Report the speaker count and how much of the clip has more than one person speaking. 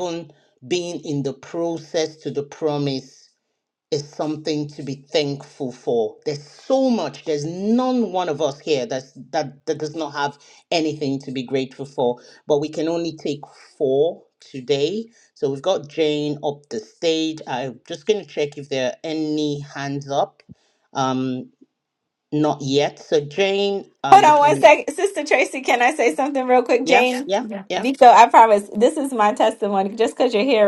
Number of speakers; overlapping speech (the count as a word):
two, about 5%